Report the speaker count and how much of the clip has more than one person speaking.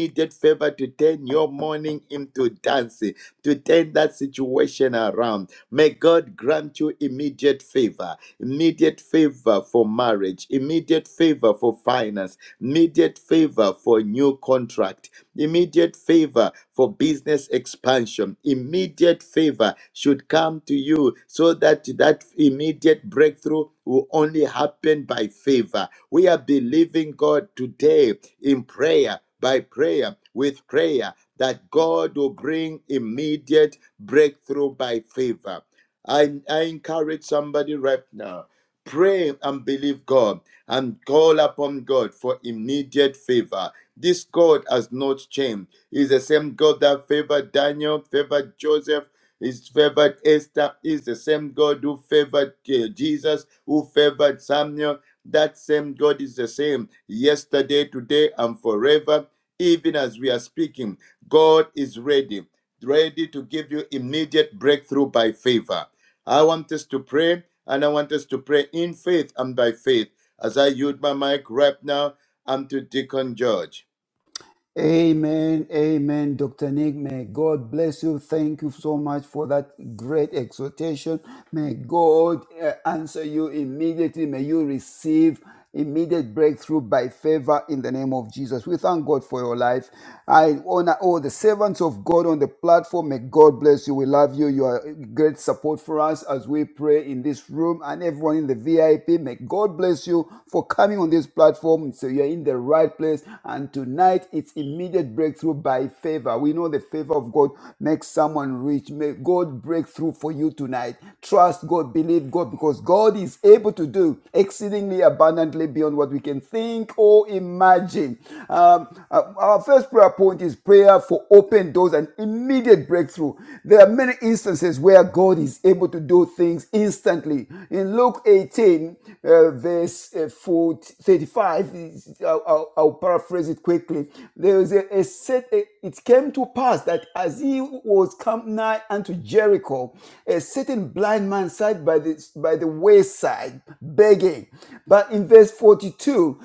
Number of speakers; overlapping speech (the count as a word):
two, no overlap